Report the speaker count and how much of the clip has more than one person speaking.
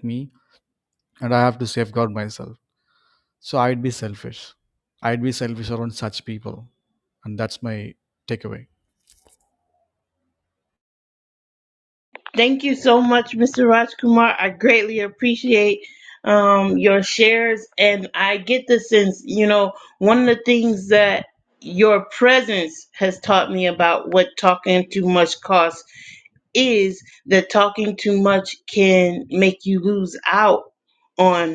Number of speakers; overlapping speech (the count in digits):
2, no overlap